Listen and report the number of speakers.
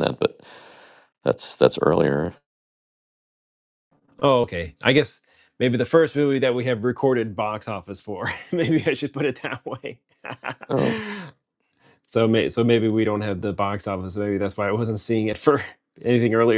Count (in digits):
2